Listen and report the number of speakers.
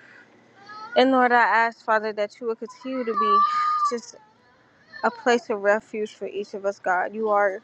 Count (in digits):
1